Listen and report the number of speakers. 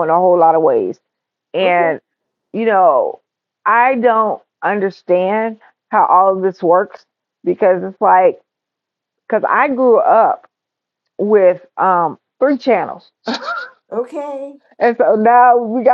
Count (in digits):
2